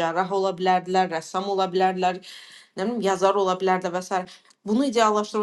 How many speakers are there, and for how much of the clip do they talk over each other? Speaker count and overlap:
1, no overlap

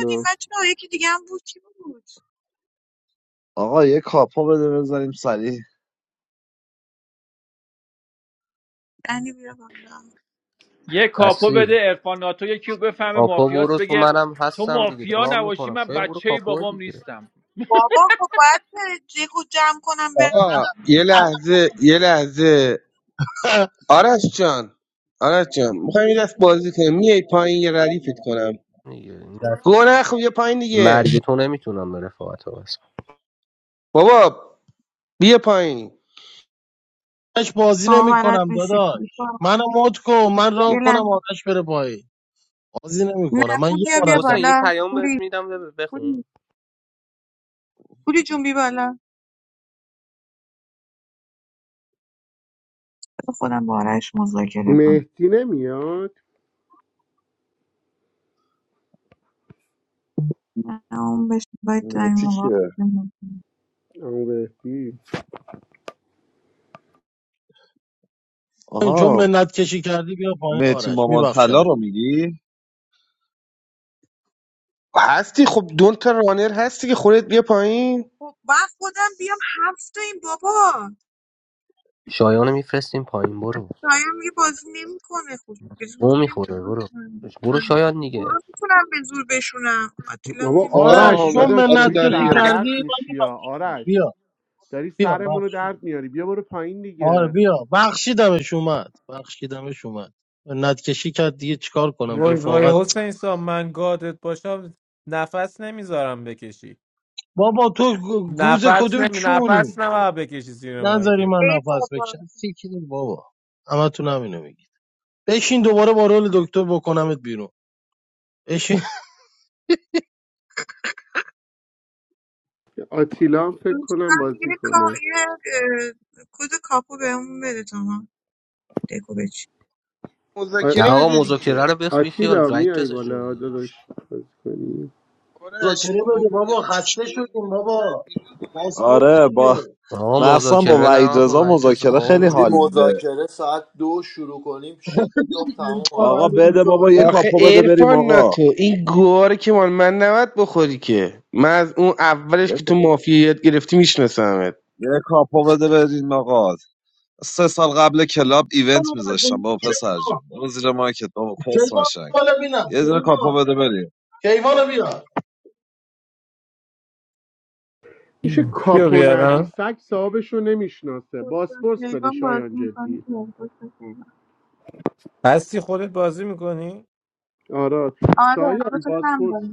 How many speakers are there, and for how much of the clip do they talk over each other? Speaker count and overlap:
9, about 20%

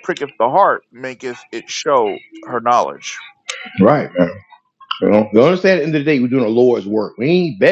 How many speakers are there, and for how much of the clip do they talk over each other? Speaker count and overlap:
2, no overlap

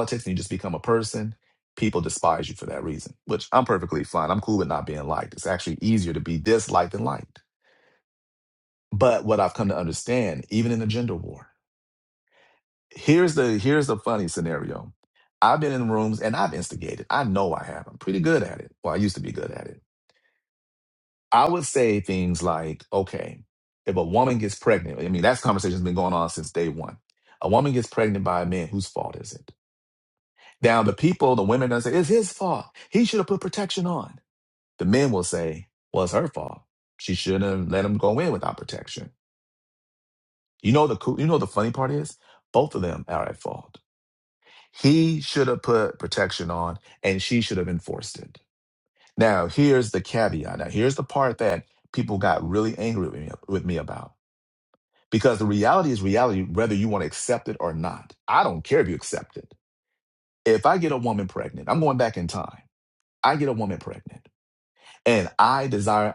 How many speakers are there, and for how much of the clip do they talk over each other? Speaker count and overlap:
1, no overlap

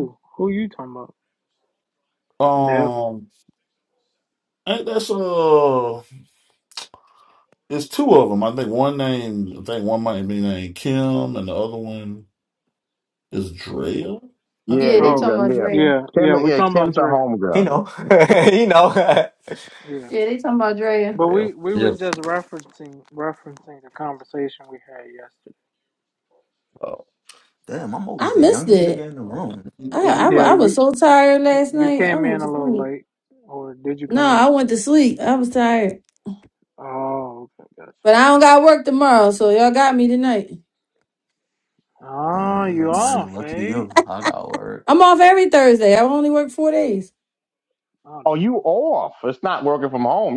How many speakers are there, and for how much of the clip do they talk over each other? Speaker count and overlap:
5, about 16%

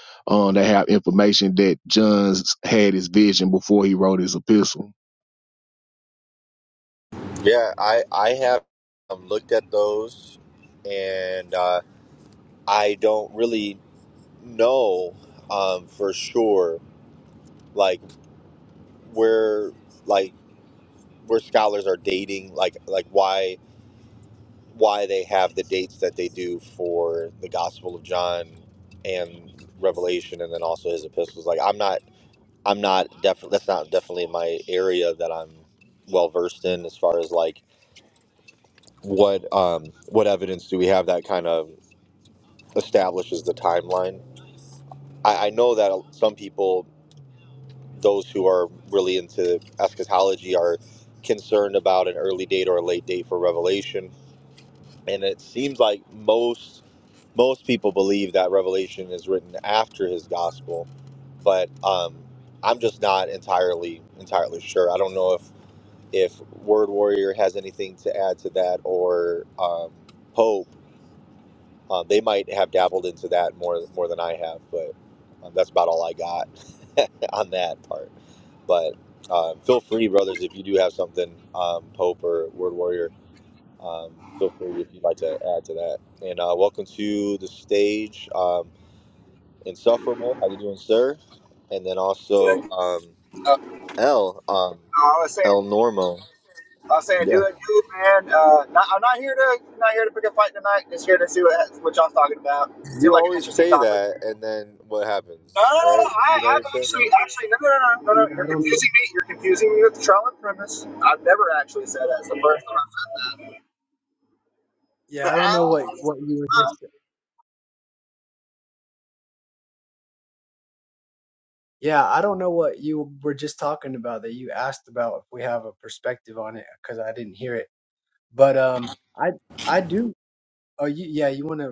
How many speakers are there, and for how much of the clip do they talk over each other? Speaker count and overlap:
4, about 3%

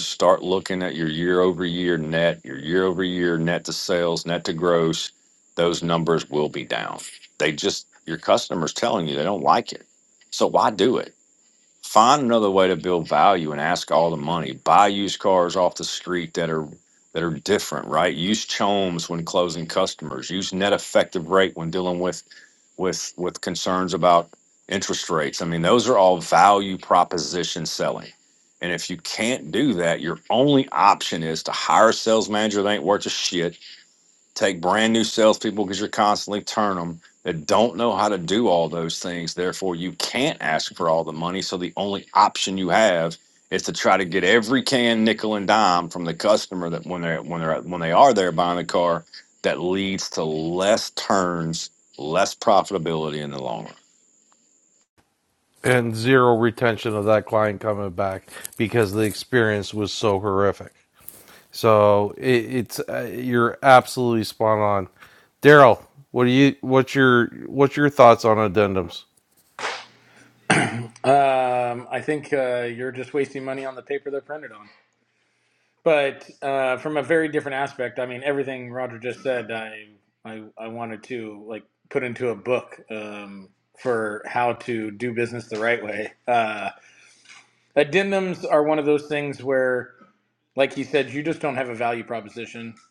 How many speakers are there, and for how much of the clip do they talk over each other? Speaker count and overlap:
3, no overlap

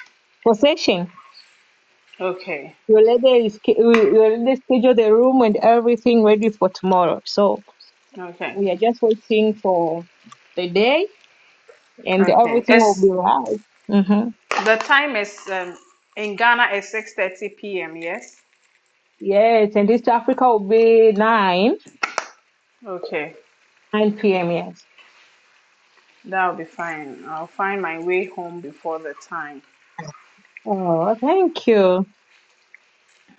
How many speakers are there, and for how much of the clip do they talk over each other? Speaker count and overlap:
2, about 2%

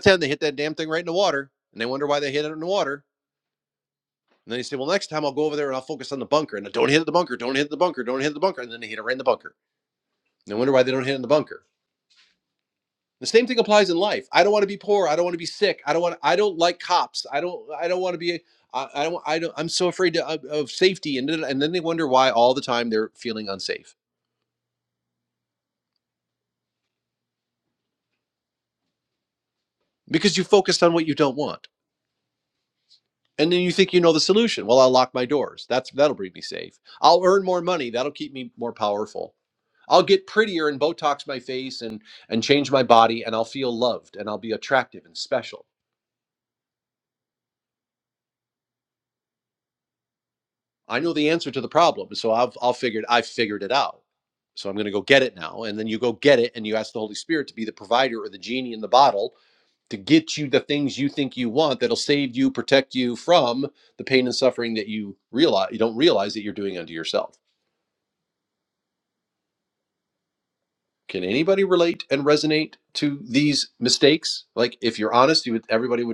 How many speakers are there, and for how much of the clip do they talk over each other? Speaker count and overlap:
1, no overlap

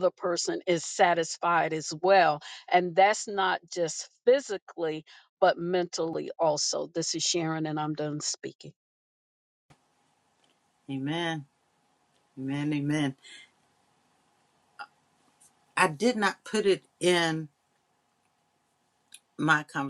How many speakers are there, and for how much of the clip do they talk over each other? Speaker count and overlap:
2, no overlap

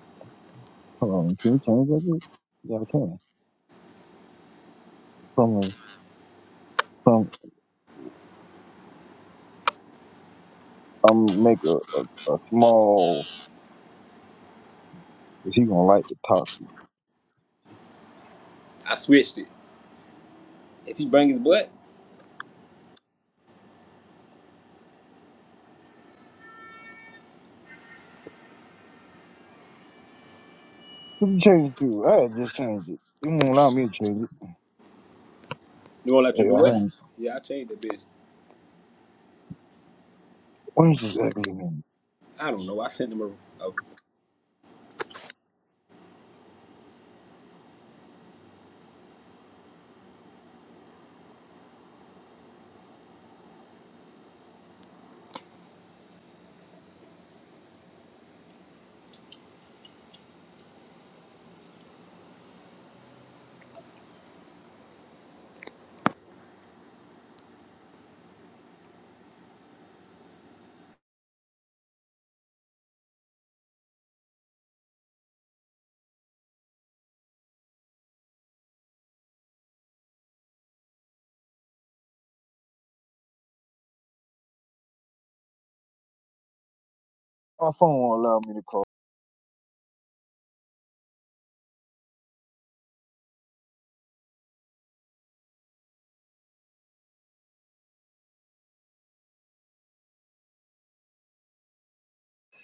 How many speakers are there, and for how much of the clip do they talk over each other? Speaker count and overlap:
2, under 1%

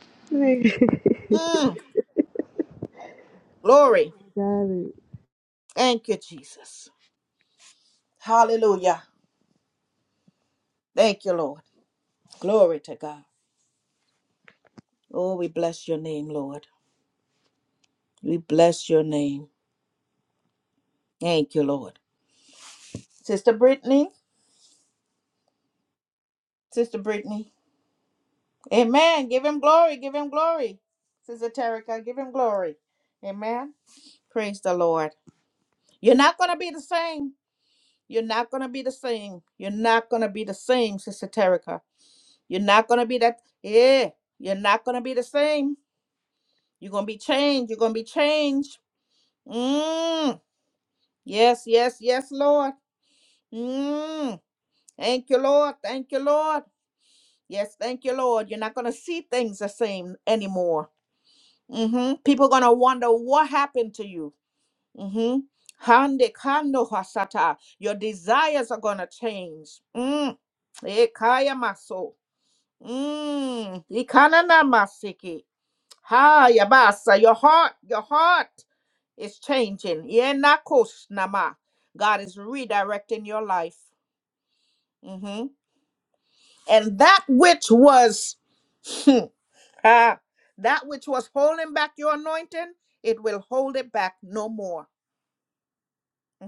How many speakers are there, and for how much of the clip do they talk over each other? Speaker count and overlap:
2, no overlap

